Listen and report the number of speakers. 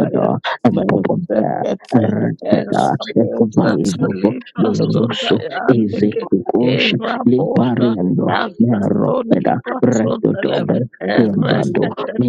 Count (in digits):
2